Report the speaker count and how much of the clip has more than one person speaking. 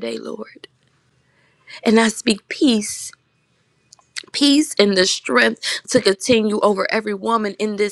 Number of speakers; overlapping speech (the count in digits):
1, no overlap